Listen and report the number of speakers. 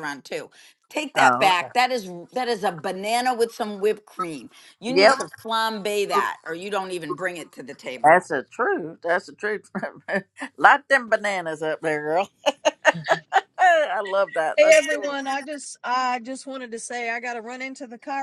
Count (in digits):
3